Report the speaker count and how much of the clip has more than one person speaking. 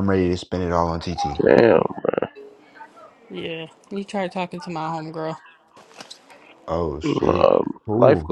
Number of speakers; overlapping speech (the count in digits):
3, about 11%